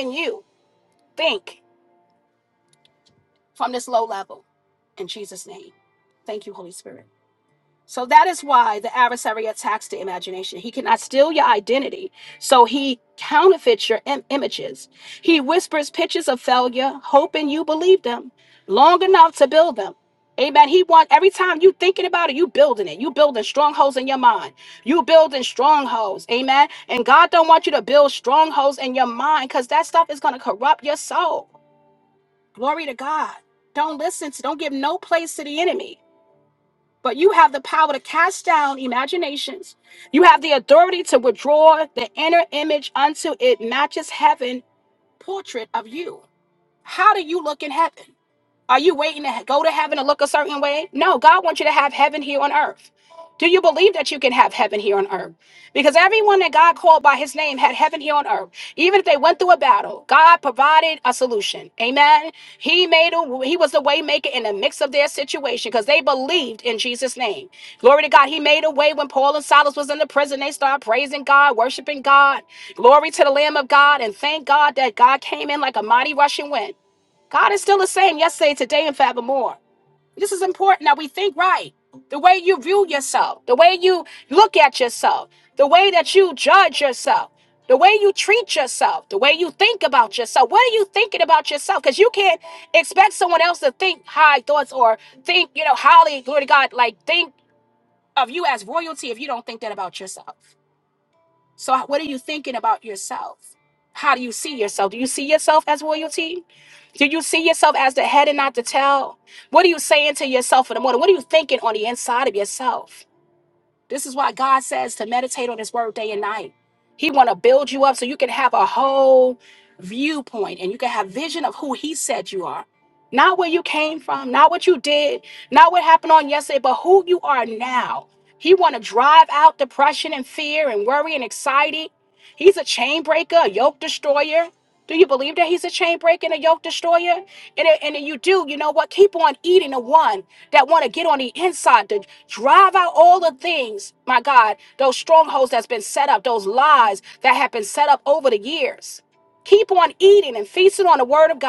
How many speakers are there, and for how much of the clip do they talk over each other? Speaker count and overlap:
one, no overlap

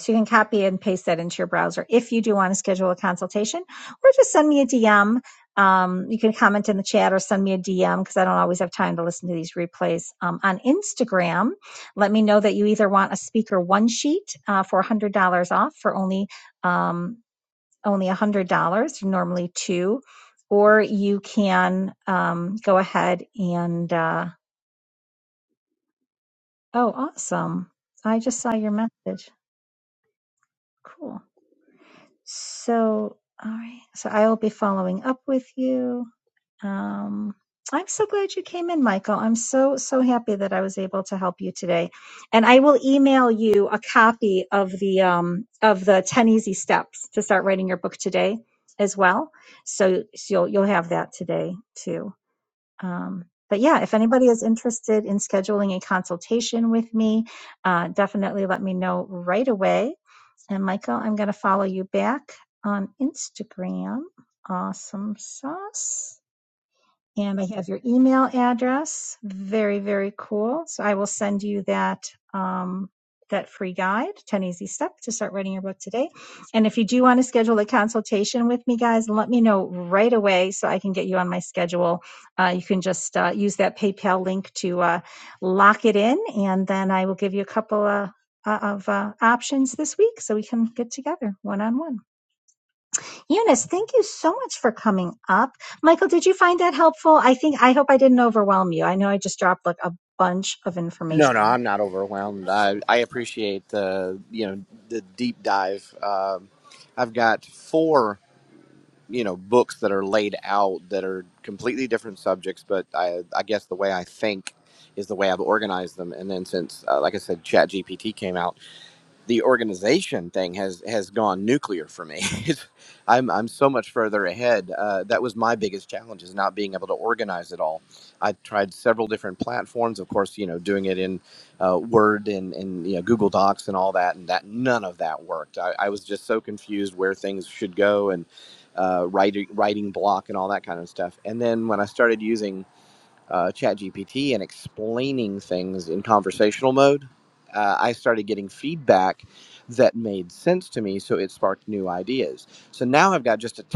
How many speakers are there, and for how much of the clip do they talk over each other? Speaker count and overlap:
two, under 1%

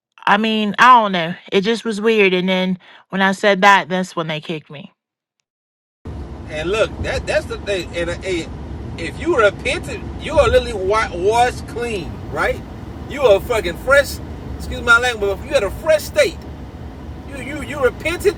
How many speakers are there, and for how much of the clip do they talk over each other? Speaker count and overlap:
two, no overlap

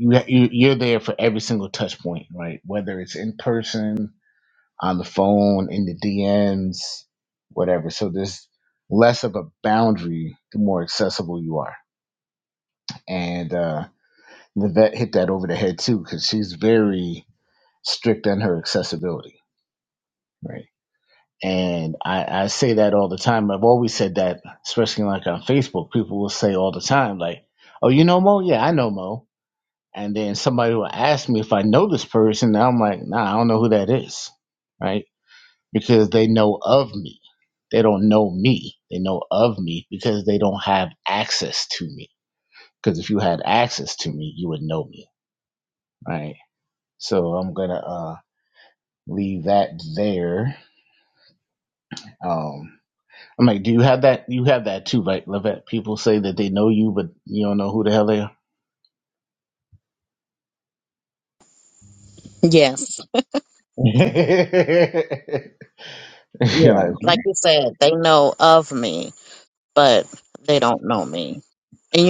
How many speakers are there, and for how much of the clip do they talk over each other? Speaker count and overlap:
two, about 1%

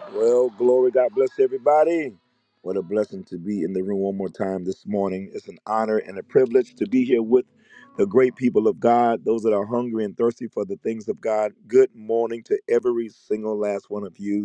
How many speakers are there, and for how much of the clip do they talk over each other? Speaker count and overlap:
one, no overlap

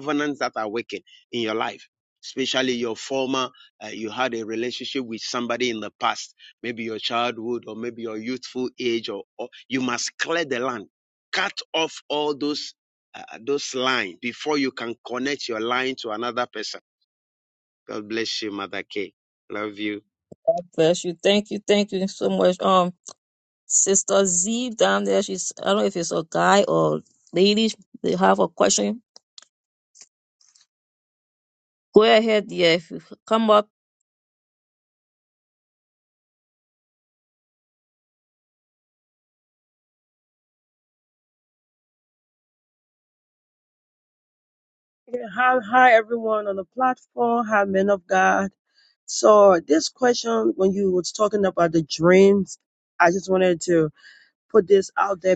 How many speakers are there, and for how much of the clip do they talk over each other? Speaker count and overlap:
three, no overlap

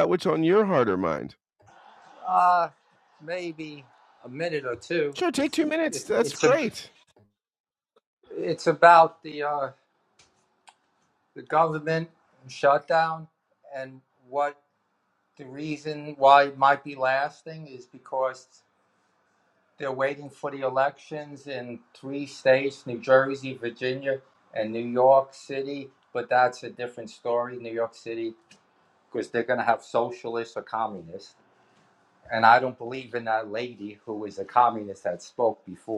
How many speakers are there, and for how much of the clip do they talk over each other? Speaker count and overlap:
two, about 2%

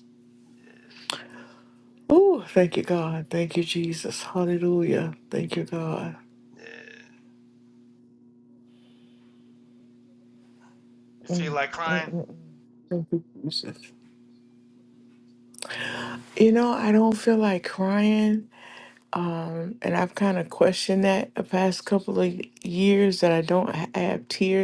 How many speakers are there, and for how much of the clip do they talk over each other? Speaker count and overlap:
two, about 2%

